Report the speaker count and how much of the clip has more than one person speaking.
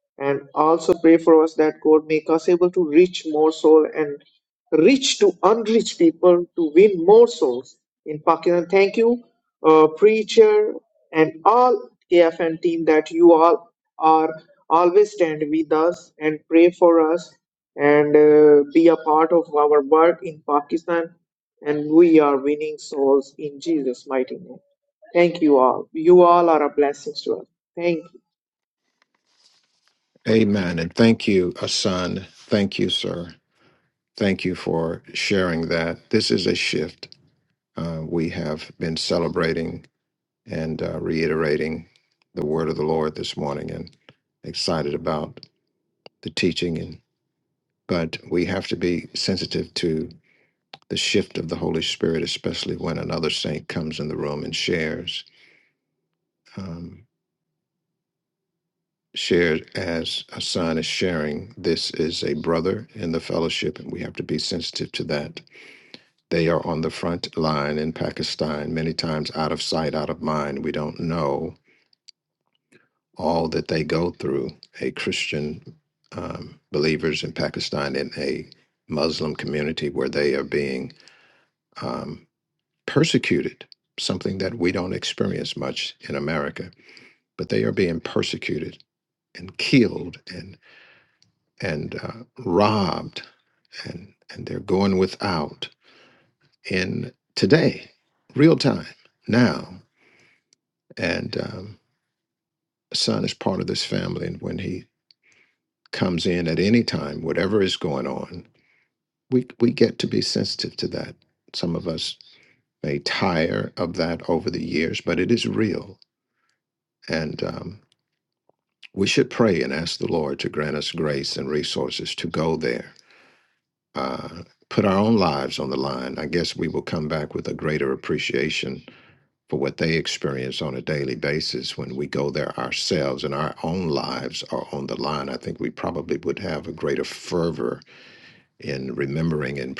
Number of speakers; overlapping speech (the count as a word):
two, no overlap